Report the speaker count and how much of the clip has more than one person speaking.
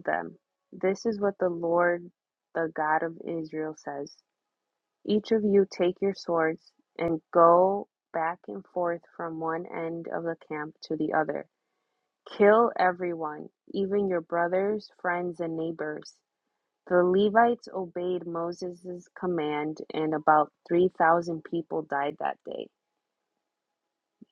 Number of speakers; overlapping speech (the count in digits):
1, no overlap